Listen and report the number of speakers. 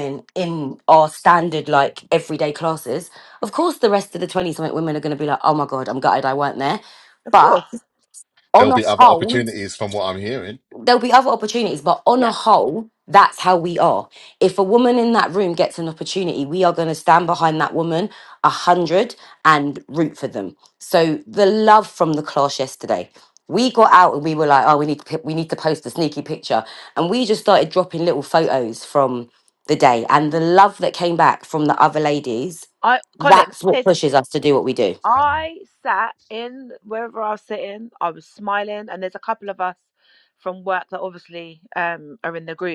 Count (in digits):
3